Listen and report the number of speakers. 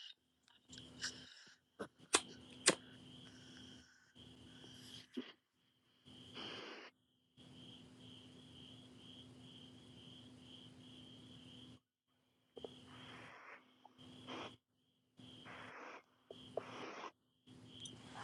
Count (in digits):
0